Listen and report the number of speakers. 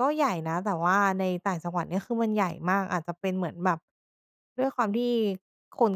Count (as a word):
one